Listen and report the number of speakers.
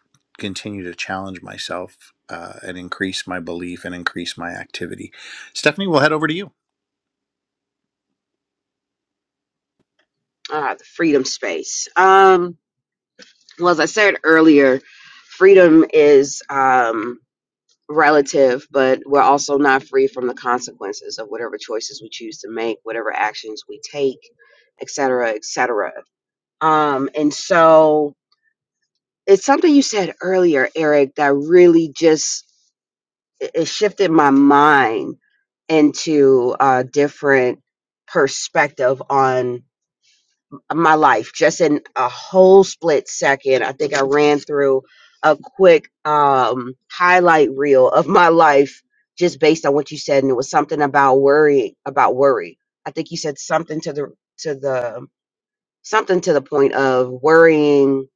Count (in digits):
2